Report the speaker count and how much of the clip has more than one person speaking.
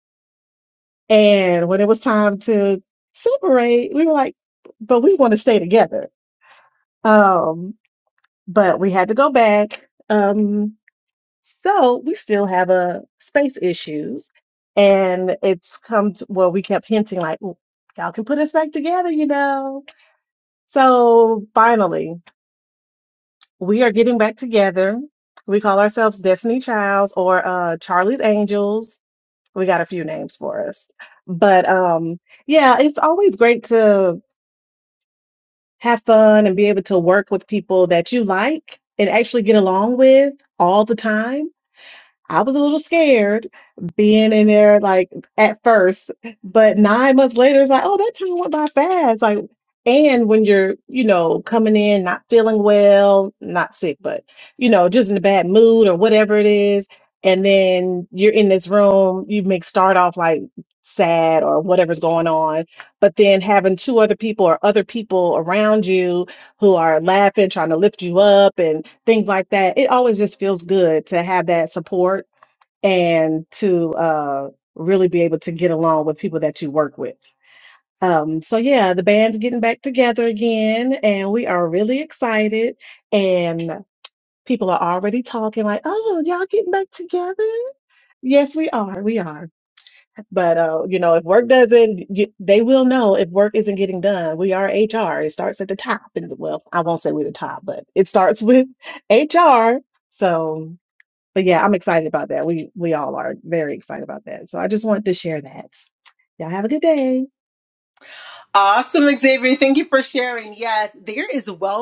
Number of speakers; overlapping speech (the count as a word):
two, no overlap